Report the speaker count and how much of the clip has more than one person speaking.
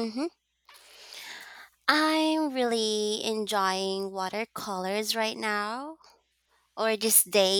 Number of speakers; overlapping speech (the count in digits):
1, no overlap